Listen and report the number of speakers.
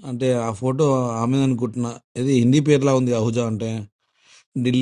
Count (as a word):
one